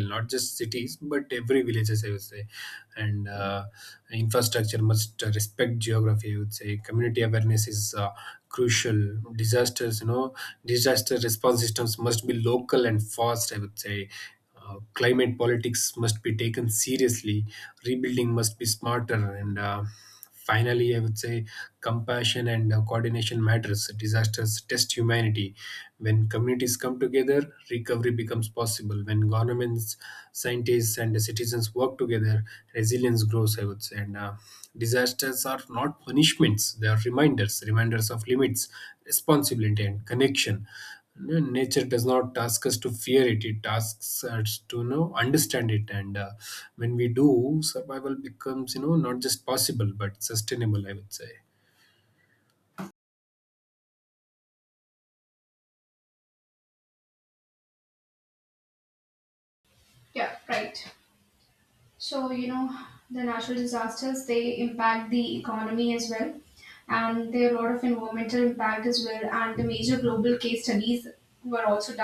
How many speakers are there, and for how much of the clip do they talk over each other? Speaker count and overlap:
two, no overlap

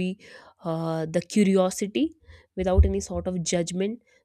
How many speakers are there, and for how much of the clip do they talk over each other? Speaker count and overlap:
one, no overlap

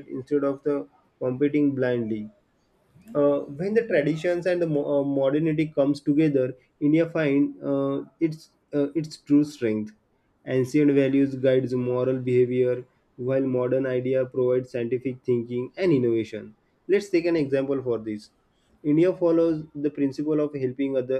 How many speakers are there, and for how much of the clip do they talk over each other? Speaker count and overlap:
one, no overlap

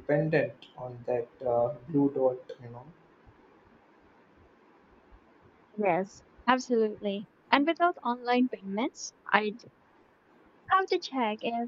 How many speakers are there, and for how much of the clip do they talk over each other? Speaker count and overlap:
two, no overlap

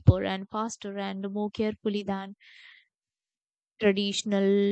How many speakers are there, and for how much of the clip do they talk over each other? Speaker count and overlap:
one, no overlap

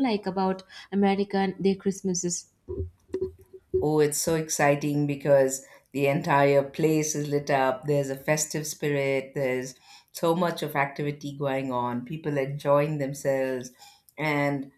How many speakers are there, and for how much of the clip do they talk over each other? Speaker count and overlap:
two, no overlap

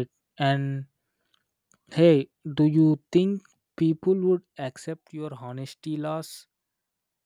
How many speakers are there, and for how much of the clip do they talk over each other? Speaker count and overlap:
one, no overlap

